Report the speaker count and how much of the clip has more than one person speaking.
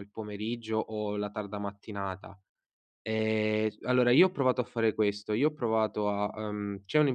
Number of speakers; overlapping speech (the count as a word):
one, no overlap